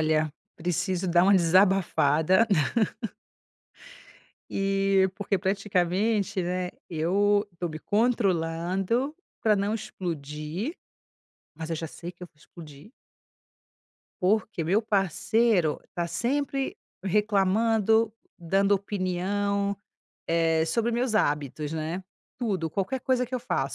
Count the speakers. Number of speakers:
1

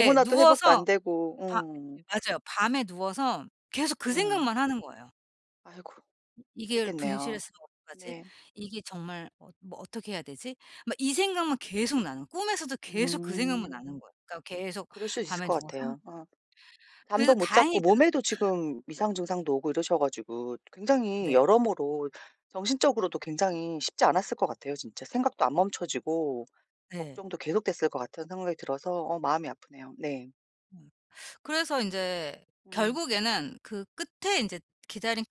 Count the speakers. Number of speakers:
2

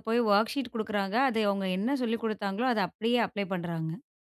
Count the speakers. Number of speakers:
1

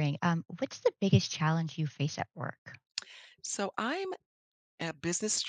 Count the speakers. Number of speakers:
2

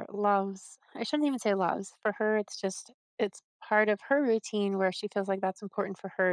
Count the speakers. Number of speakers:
1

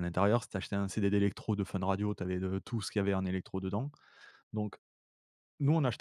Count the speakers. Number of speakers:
1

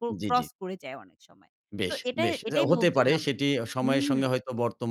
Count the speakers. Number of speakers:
2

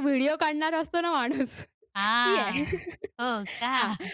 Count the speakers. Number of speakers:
2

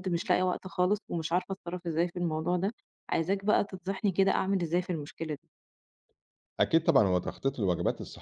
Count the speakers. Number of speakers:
2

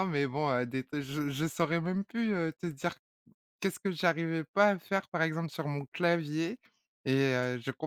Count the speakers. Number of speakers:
1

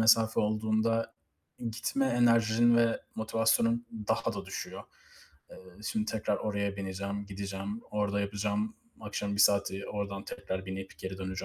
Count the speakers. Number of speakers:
1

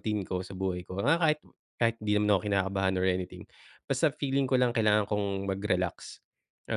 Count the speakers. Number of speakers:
1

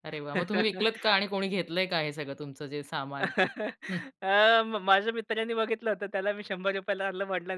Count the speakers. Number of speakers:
2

